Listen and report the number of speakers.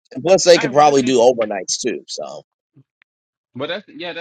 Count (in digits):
2